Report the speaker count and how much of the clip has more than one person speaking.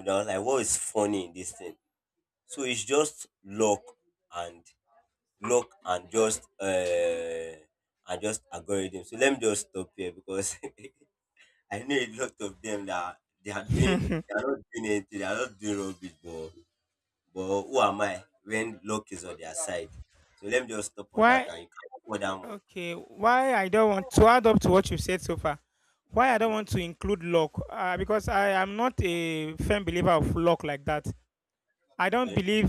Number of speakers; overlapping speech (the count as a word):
two, about 2%